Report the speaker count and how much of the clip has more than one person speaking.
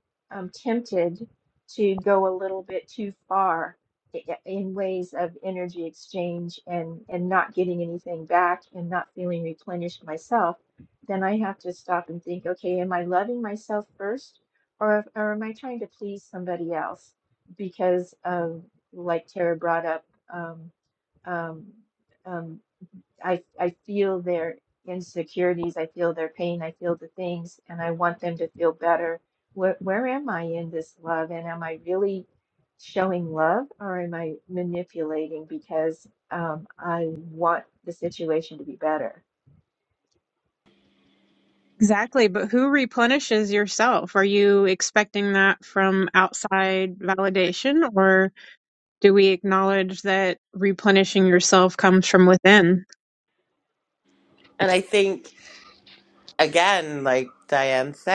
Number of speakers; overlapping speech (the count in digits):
3, no overlap